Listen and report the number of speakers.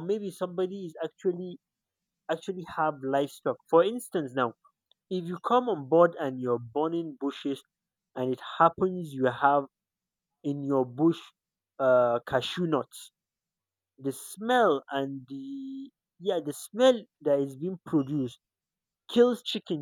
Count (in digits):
1